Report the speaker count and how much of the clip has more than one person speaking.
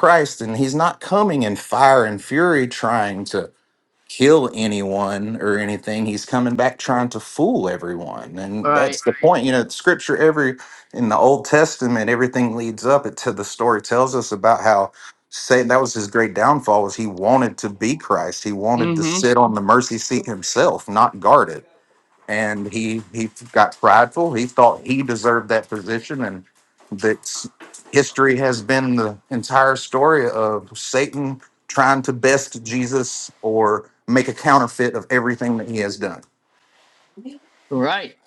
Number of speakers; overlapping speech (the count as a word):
two, about 2%